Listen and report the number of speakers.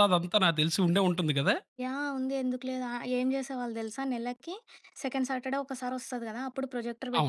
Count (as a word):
two